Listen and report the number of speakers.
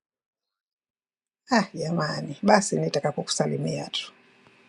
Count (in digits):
1